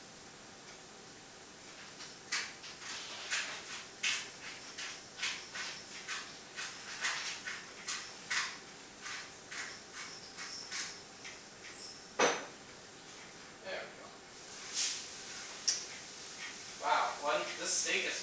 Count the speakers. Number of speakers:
one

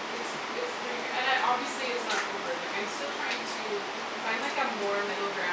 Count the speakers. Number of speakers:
one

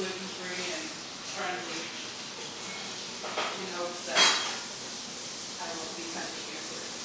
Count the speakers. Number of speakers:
one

